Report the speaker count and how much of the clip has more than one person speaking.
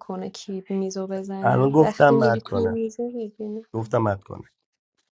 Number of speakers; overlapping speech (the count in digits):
2, about 26%